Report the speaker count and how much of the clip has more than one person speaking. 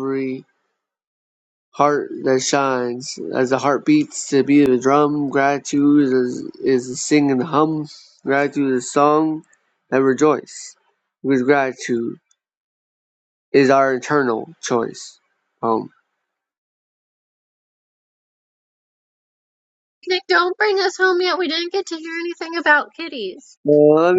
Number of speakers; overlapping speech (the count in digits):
2, no overlap